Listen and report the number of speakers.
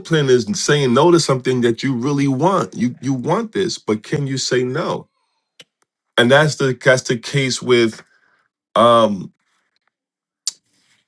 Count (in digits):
1